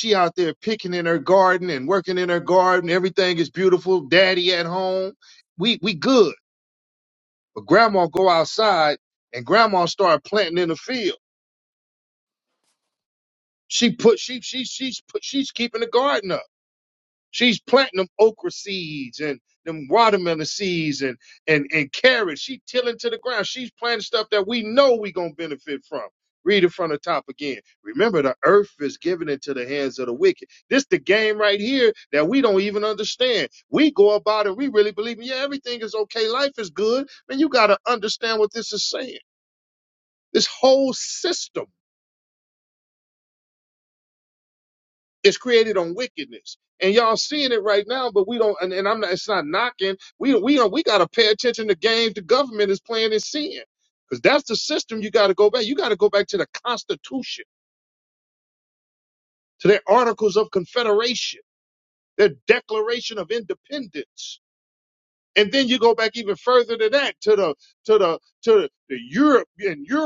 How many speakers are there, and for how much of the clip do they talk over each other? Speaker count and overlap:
1, no overlap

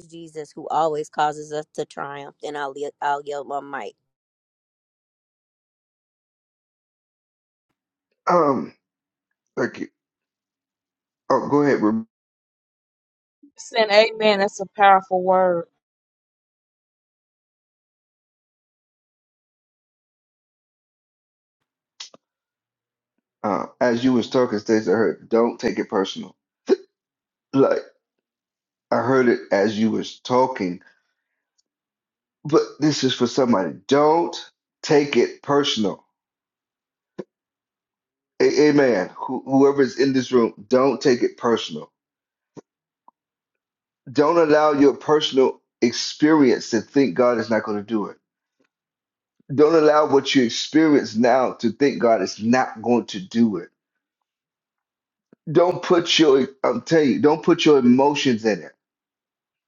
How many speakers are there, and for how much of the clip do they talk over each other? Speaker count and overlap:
3, no overlap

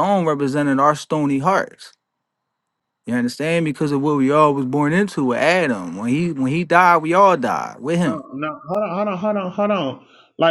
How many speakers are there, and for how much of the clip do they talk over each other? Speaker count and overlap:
2, about 1%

